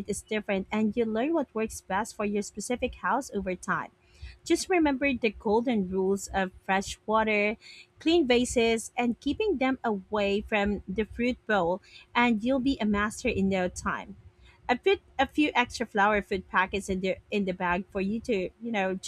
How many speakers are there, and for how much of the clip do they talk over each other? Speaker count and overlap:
one, no overlap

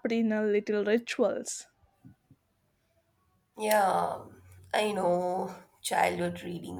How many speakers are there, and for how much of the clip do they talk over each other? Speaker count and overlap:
two, no overlap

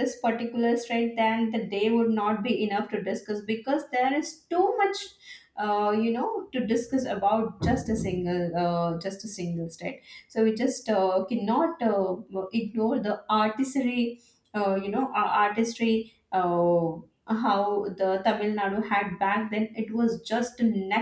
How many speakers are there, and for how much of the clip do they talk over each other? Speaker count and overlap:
one, no overlap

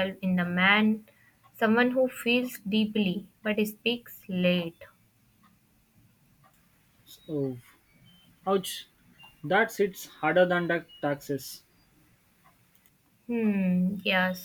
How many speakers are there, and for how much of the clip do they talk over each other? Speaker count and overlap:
two, no overlap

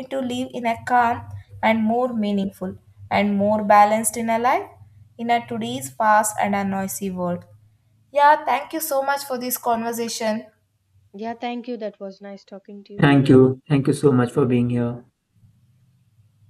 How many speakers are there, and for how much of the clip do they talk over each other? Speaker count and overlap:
three, under 1%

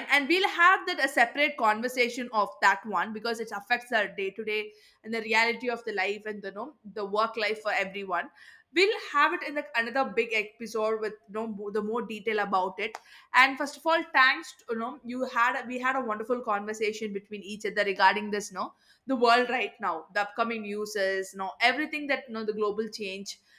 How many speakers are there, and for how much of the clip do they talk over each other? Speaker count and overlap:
one, no overlap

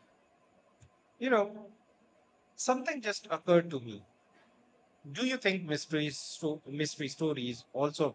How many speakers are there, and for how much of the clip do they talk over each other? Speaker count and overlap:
one, no overlap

